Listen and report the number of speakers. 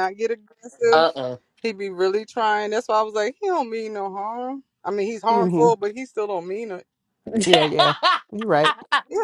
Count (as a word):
three